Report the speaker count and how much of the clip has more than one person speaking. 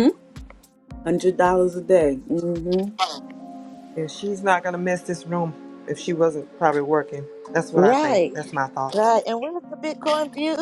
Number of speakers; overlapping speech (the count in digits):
3, about 8%